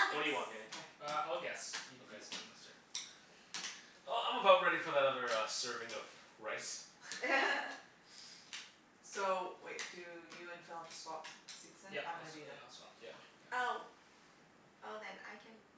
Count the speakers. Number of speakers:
4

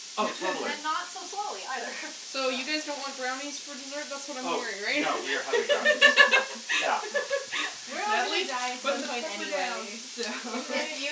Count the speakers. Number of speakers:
4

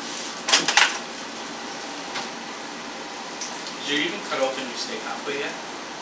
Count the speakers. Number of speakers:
1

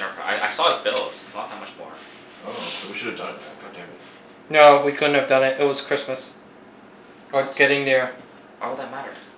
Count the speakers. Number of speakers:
3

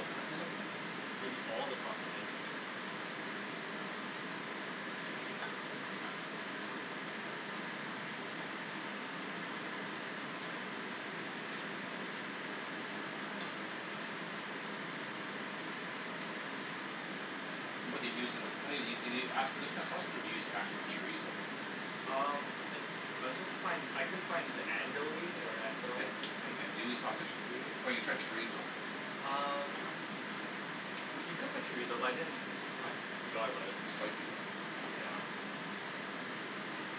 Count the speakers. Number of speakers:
2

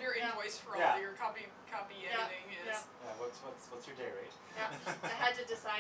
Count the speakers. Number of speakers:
3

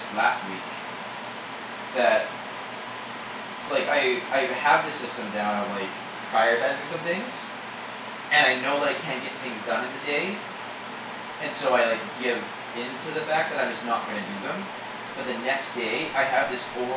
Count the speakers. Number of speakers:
1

